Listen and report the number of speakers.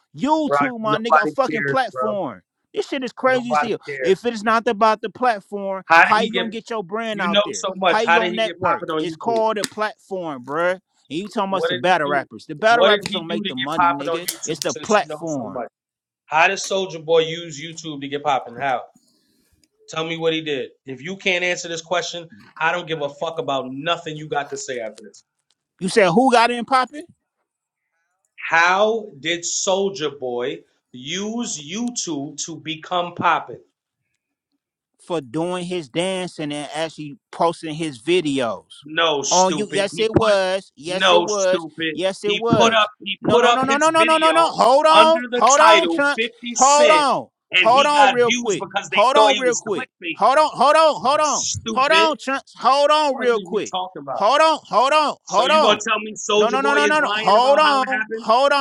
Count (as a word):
two